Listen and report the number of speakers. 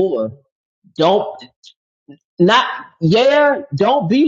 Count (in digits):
1